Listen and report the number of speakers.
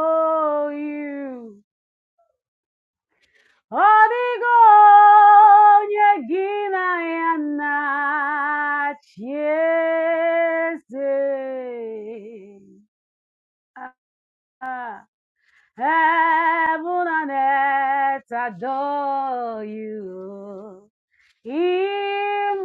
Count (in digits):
1